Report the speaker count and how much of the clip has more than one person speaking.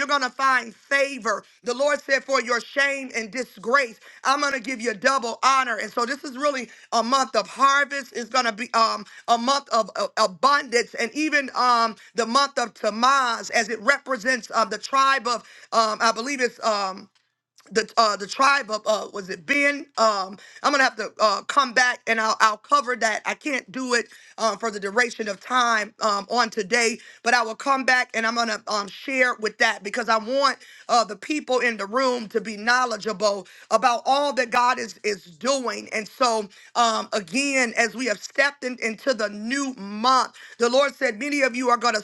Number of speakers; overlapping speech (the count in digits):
1, no overlap